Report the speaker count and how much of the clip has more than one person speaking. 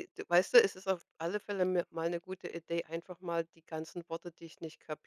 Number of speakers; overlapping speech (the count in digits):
1, no overlap